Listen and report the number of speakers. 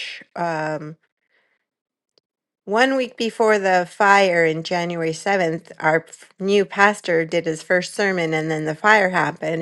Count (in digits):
1